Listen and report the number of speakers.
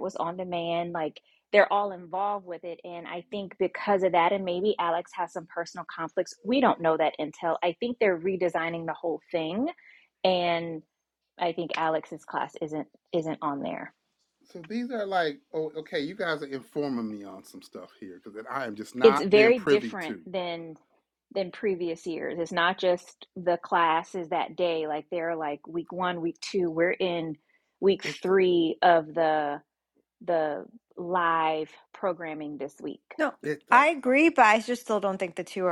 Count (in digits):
3